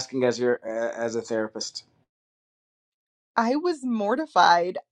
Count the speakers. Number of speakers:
2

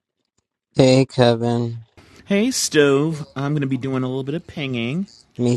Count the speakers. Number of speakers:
2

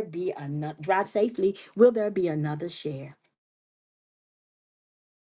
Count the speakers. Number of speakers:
1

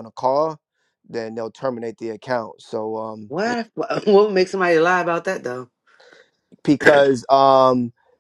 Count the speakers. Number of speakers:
2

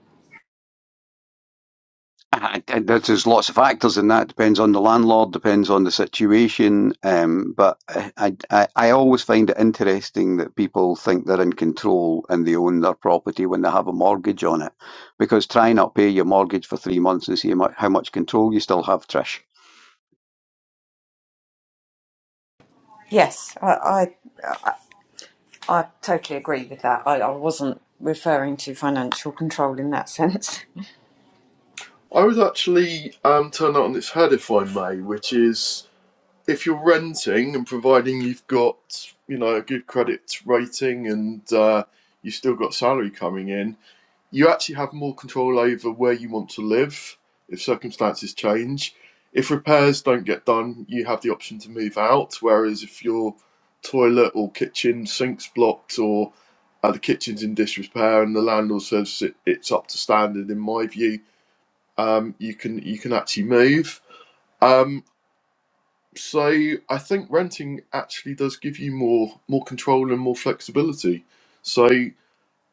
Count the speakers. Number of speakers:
3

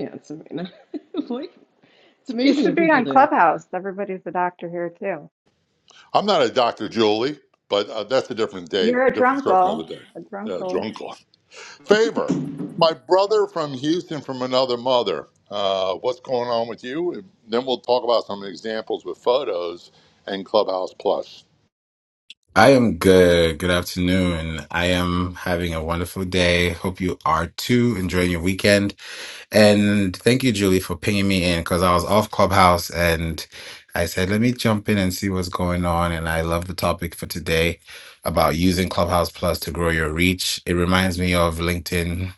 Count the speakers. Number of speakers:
4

